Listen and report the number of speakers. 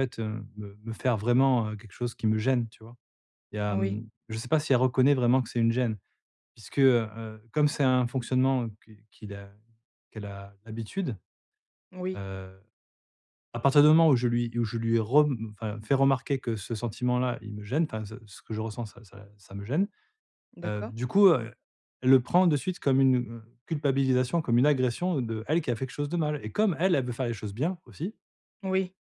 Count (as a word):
two